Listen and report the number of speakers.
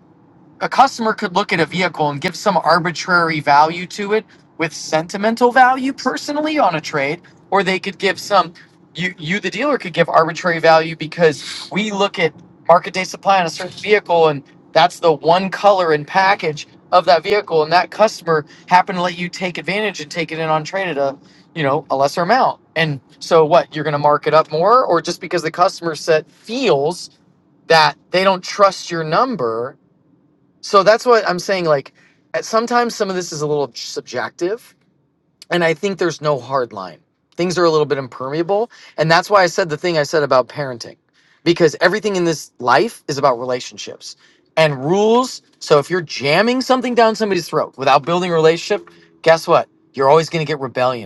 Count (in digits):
1